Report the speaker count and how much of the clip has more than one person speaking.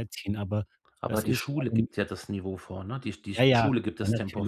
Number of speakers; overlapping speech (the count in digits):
2, about 44%